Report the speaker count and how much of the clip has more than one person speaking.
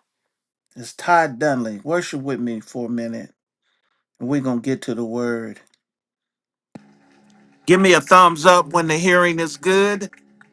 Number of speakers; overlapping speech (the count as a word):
one, no overlap